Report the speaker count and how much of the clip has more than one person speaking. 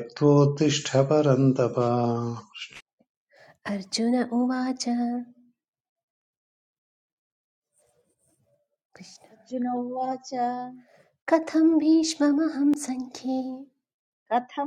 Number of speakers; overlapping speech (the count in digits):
3, no overlap